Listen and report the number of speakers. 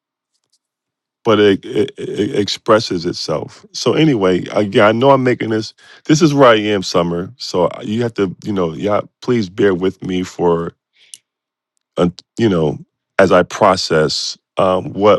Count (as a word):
one